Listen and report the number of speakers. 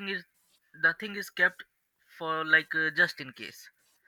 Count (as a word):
one